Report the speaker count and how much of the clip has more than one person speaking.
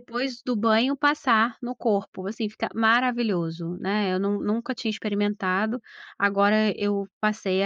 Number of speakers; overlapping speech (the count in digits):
1, no overlap